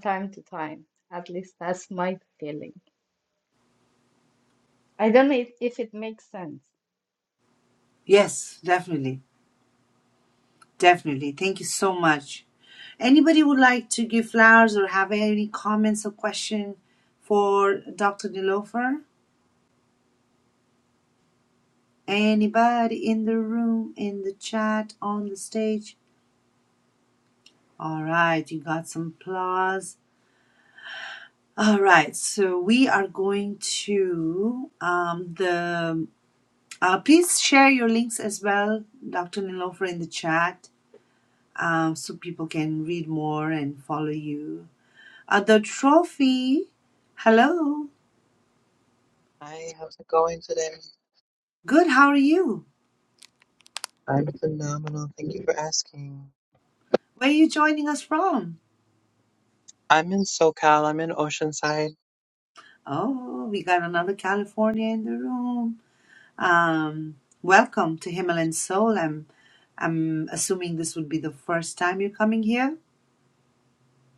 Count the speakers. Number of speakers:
three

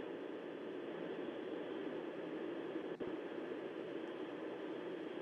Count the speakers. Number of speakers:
zero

